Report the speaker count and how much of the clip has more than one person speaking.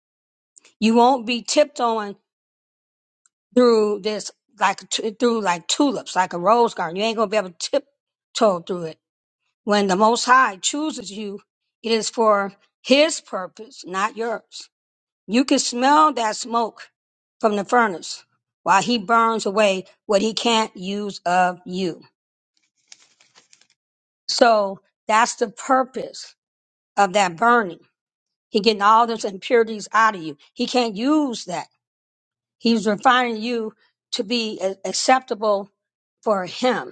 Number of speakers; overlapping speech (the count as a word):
one, no overlap